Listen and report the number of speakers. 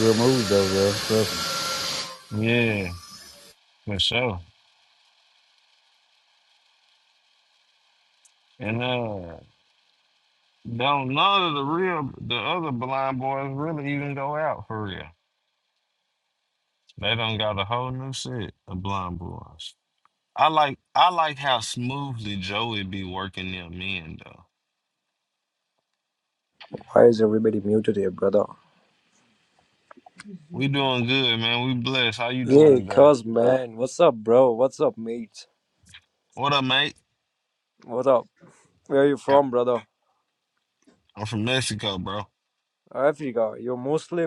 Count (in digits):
3